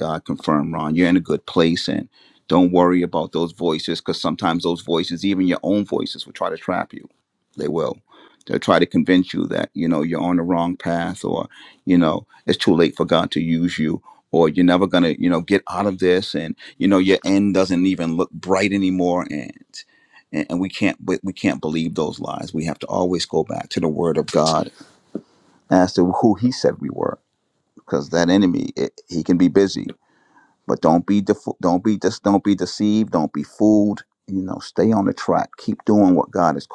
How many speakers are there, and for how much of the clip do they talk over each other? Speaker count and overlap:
one, no overlap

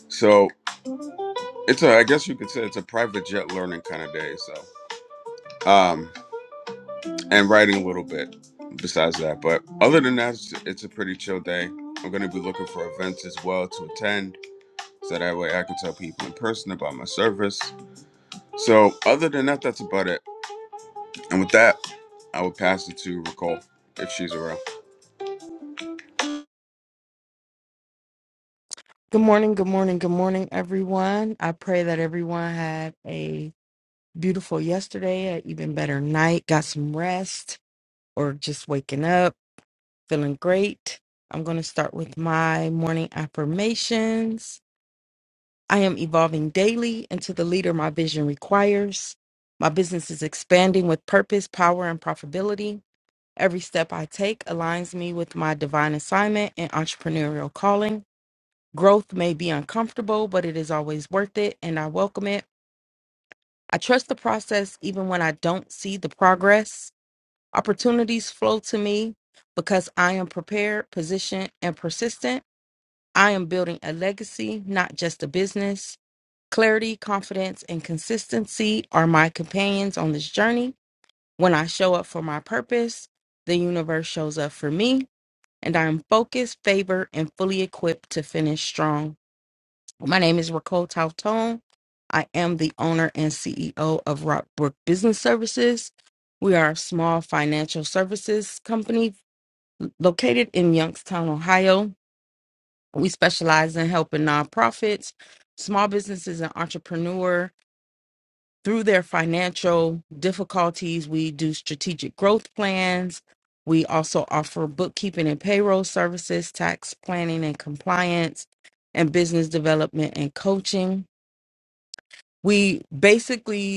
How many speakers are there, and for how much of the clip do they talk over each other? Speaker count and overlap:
two, no overlap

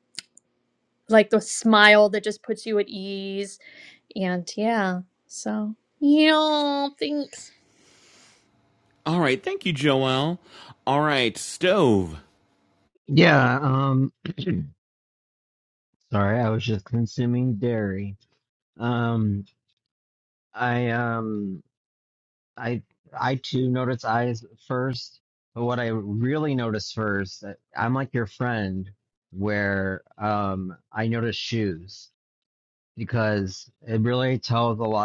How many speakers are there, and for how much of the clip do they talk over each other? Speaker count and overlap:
three, no overlap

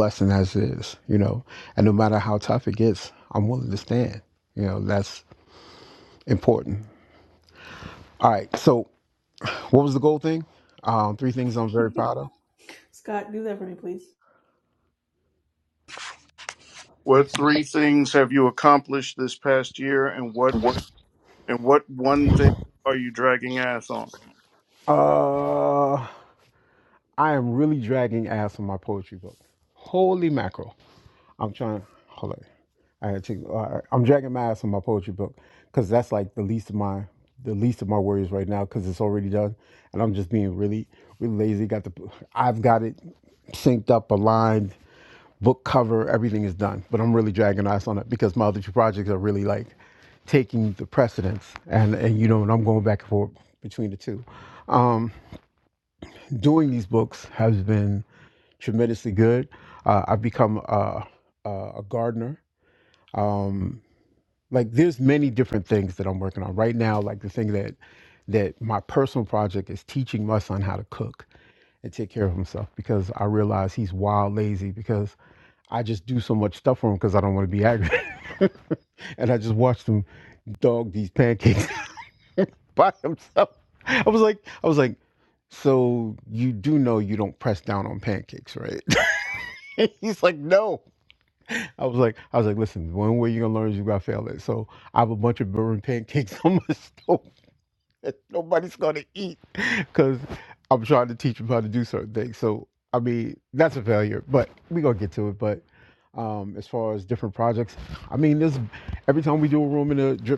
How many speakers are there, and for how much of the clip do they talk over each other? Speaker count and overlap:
three, no overlap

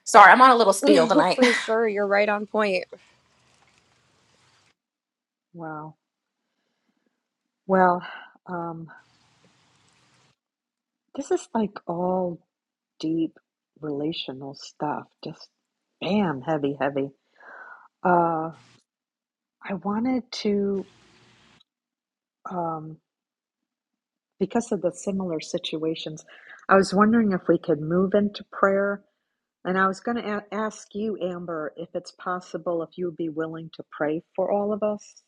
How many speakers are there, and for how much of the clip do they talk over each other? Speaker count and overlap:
three, about 2%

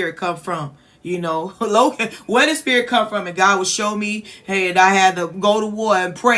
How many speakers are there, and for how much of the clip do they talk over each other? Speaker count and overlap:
one, no overlap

